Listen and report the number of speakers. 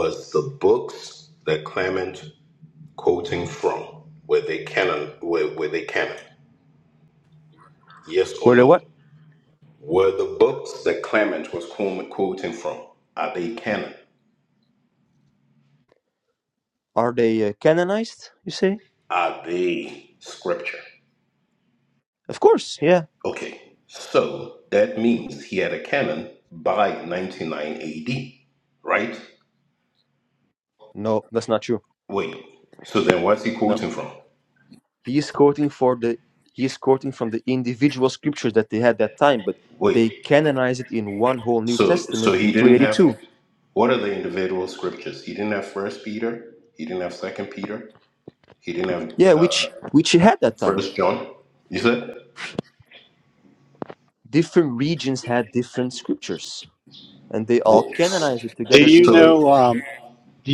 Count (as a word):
three